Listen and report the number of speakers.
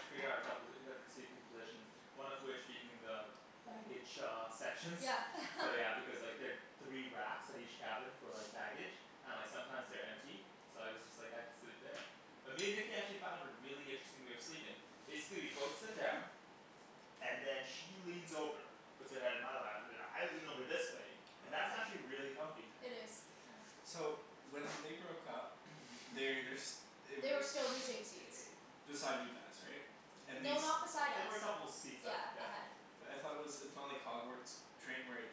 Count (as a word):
three